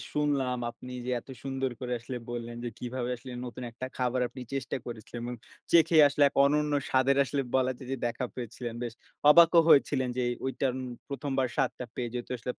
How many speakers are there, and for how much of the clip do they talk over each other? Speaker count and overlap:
1, no overlap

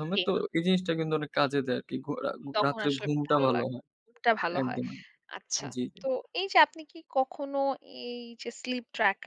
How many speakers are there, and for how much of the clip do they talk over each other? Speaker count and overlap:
2, about 18%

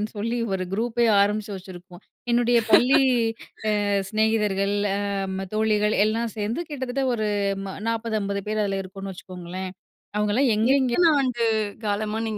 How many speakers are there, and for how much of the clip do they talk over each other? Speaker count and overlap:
2, about 2%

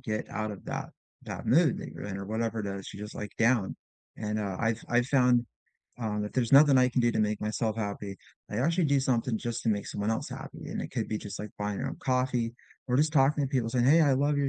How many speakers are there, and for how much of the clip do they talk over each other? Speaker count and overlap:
1, no overlap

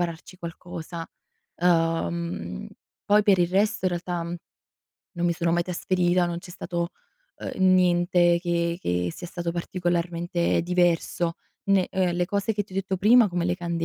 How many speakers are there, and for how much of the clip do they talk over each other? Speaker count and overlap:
1, no overlap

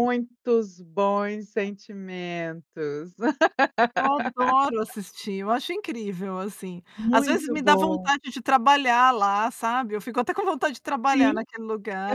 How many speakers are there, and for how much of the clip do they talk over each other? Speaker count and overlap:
2, about 13%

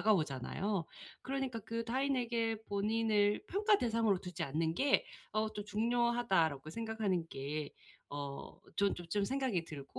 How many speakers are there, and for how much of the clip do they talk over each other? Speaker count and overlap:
1, no overlap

